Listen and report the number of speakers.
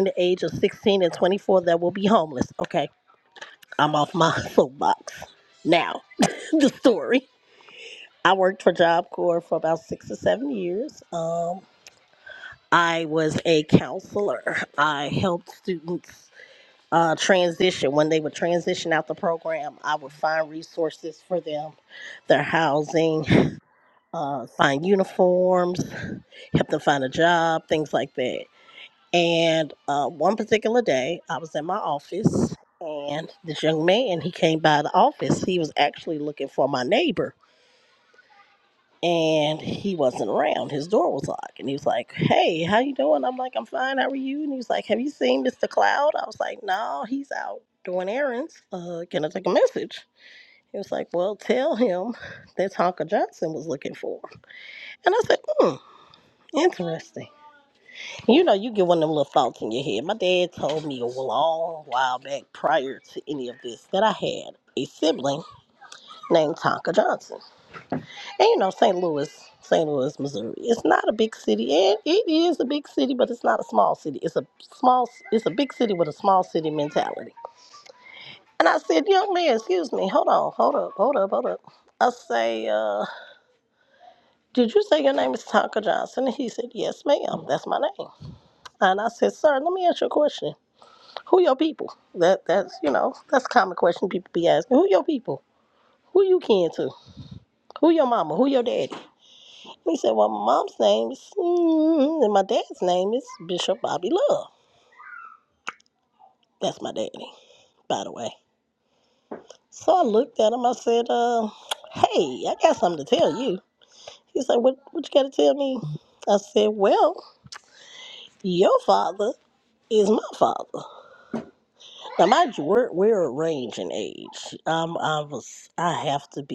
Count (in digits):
1